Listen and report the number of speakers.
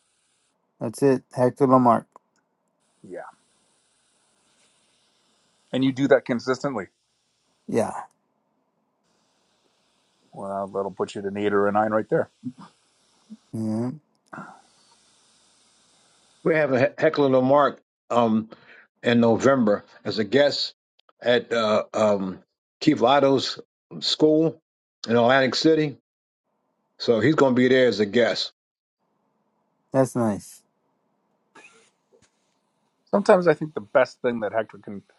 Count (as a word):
three